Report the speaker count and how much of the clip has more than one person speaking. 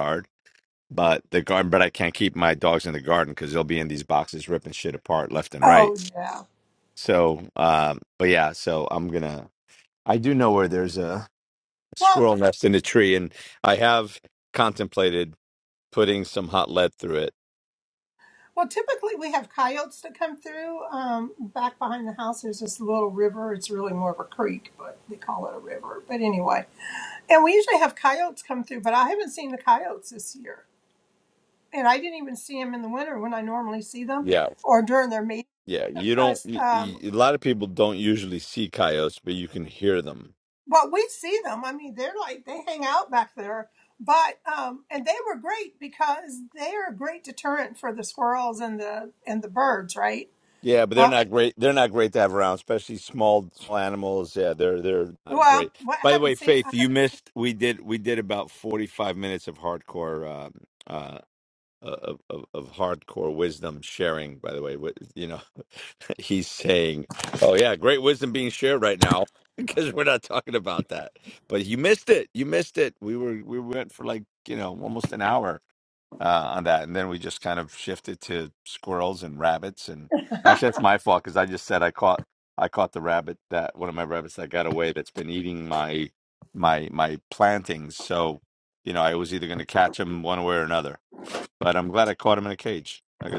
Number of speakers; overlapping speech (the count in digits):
2, about 2%